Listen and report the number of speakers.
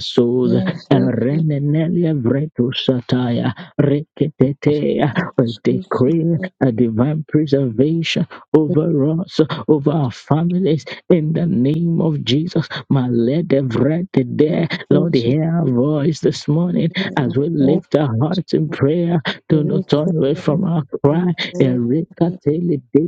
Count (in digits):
2